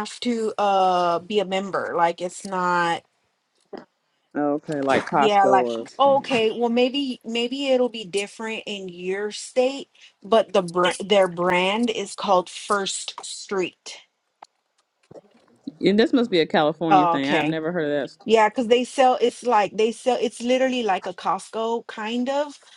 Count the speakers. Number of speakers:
2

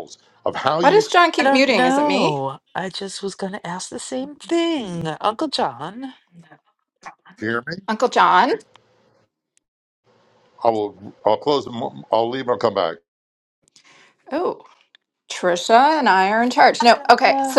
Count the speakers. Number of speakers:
3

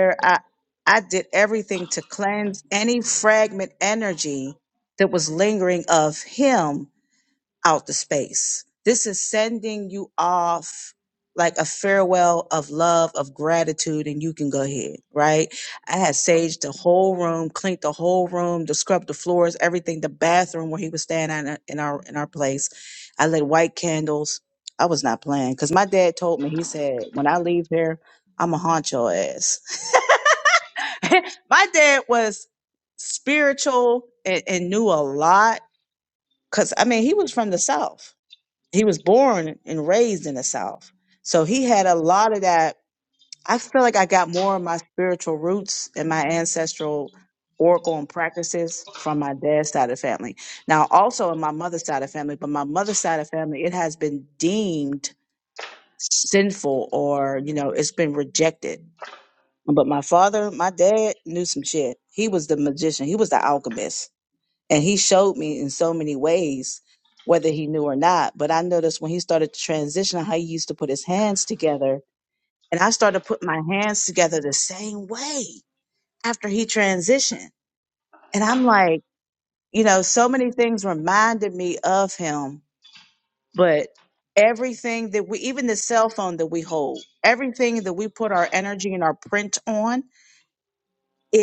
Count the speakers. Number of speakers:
1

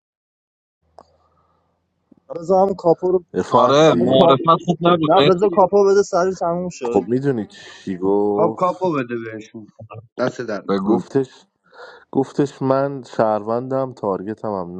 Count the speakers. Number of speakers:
4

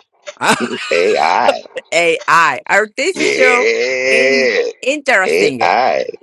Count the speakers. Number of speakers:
2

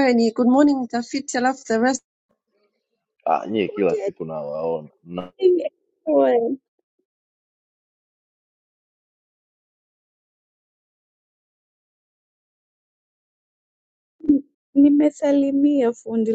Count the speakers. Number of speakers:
3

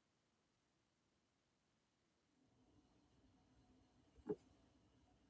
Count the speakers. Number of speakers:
0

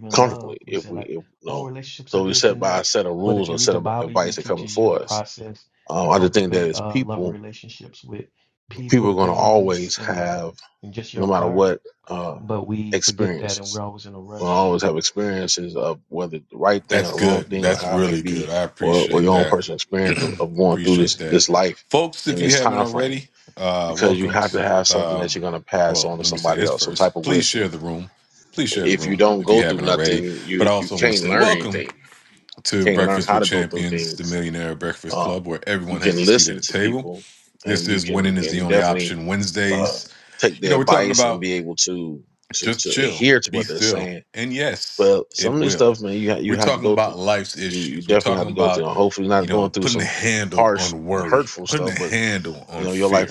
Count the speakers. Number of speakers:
3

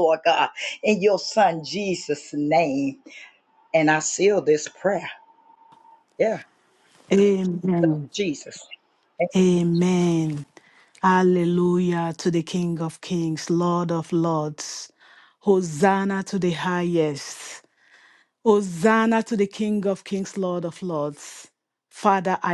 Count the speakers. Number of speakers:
2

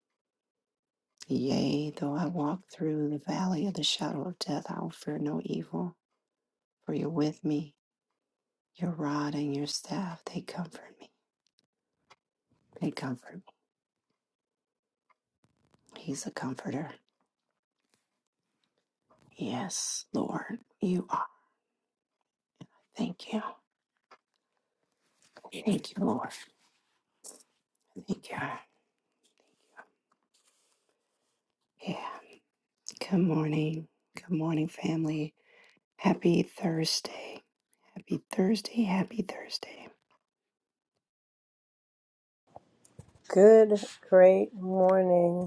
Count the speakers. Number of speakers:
2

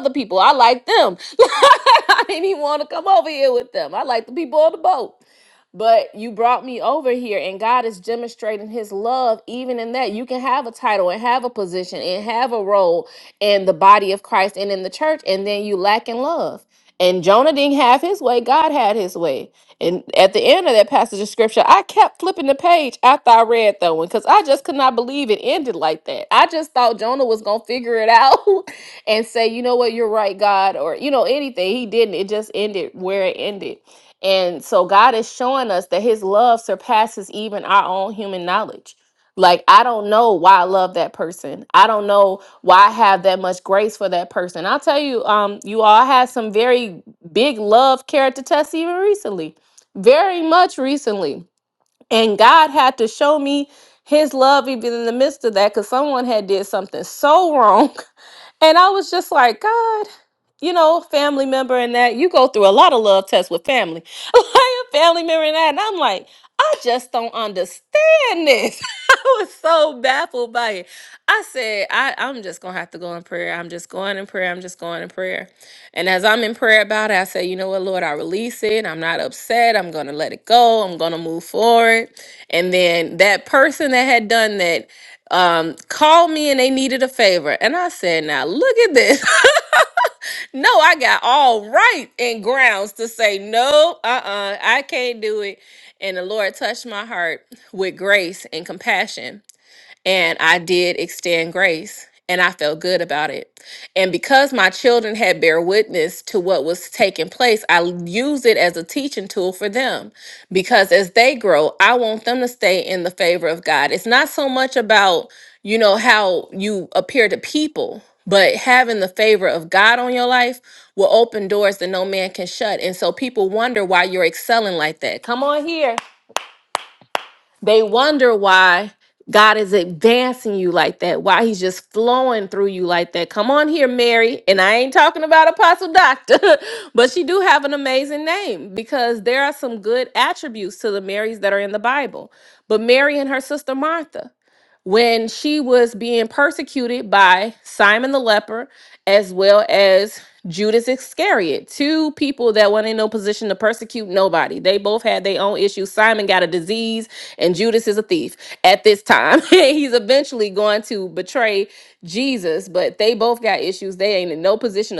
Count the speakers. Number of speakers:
1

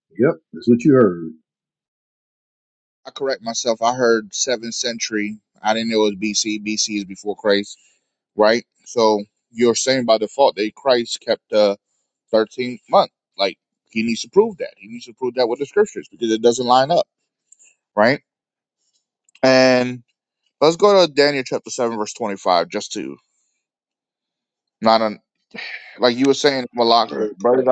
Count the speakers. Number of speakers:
2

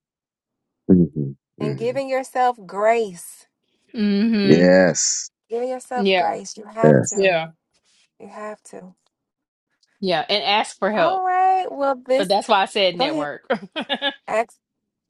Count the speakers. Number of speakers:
3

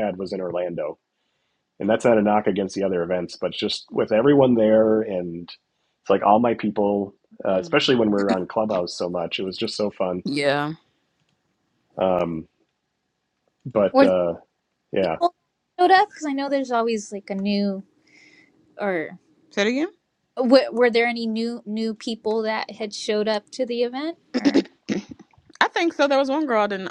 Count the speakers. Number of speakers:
3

